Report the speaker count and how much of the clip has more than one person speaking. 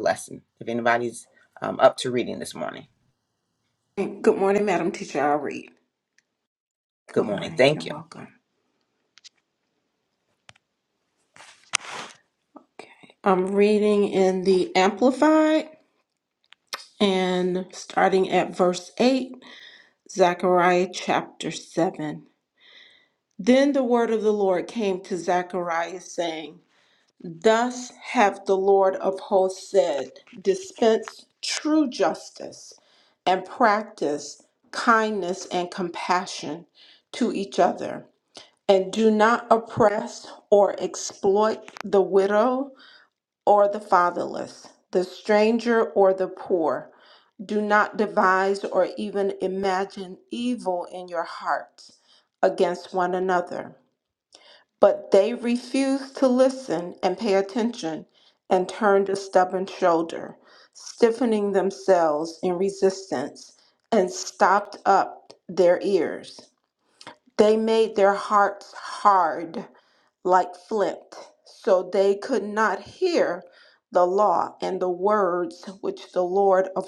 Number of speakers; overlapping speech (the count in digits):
2, about 1%